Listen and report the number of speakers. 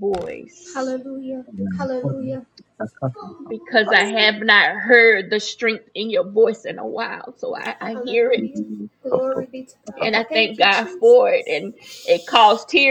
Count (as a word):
three